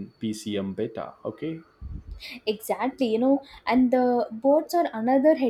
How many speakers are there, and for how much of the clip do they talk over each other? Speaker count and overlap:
2, no overlap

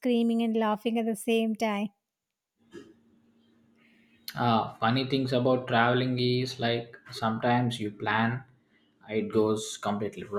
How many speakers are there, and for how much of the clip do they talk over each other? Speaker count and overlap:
2, no overlap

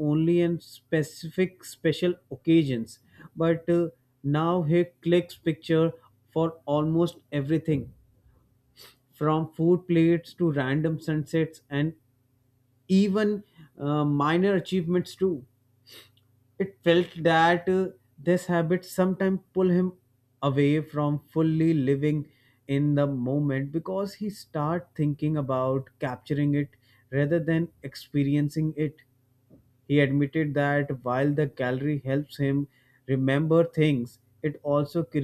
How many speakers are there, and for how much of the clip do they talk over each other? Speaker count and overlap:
1, no overlap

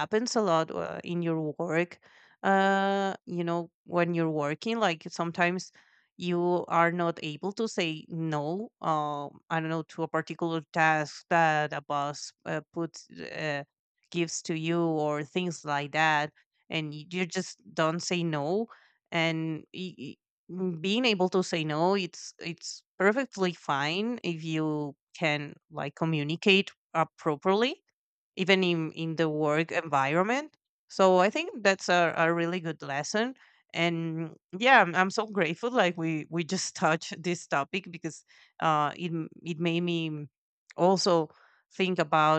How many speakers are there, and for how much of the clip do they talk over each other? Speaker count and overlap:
1, no overlap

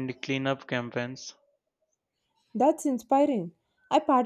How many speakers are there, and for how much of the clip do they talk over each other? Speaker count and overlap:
2, no overlap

